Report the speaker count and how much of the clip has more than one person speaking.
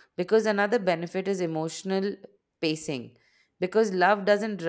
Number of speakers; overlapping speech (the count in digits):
1, no overlap